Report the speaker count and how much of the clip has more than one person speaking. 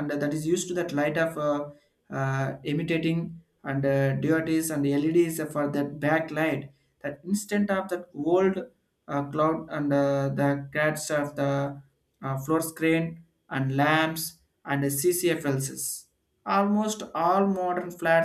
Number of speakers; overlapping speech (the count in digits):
1, no overlap